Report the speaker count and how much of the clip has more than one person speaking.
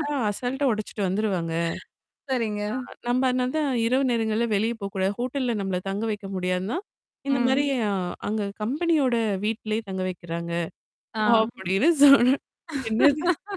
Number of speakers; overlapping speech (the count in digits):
2, about 4%